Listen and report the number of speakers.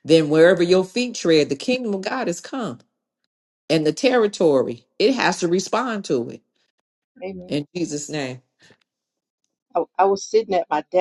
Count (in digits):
2